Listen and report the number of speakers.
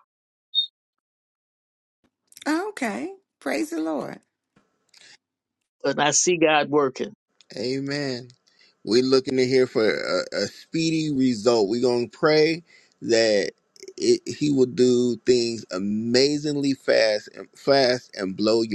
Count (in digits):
3